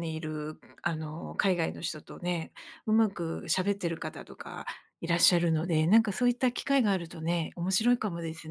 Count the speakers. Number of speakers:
1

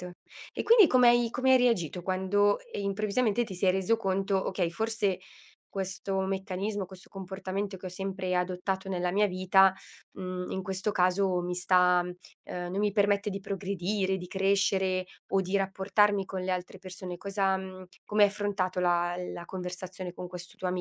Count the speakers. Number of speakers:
1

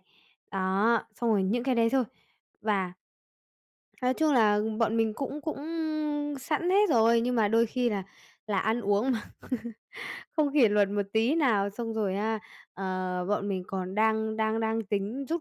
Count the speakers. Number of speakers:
1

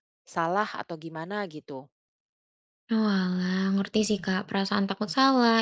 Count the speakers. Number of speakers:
2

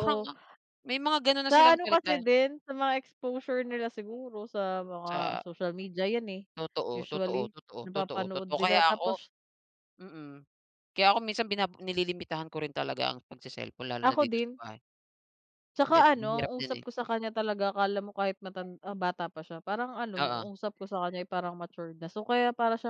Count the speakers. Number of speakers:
2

